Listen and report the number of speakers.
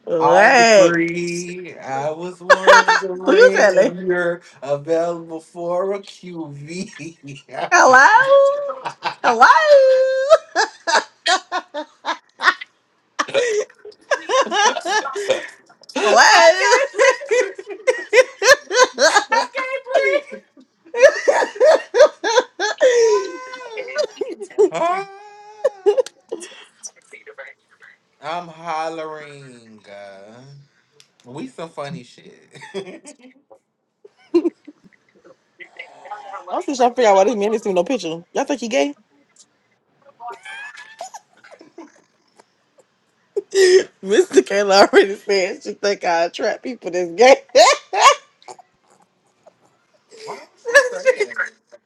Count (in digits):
2